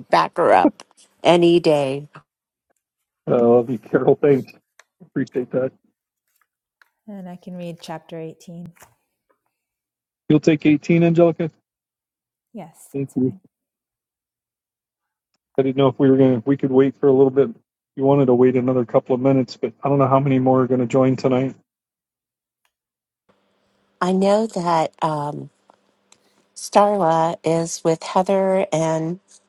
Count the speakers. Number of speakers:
3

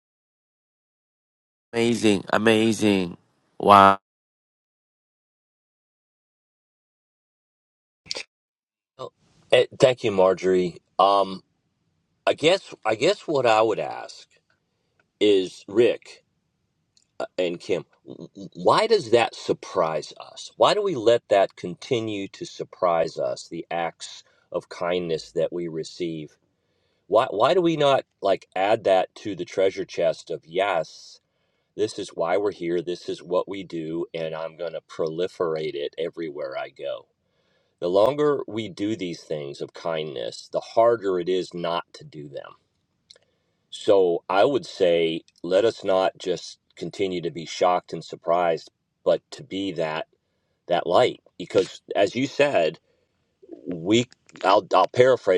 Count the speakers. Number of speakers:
2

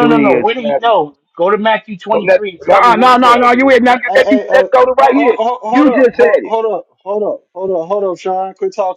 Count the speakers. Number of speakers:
3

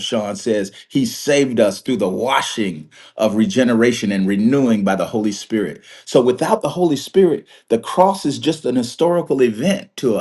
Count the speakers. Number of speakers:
1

